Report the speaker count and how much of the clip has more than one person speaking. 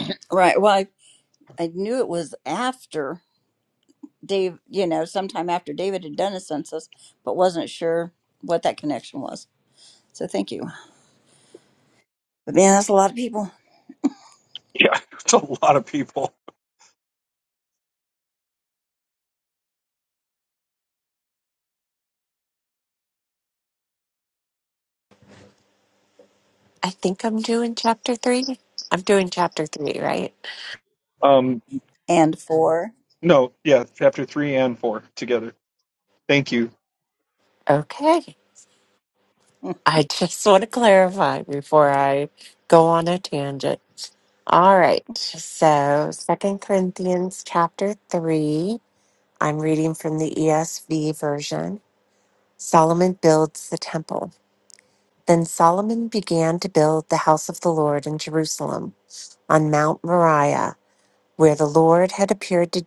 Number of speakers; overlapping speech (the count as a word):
three, no overlap